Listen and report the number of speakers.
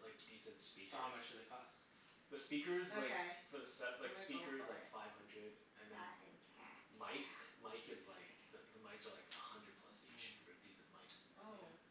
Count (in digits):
3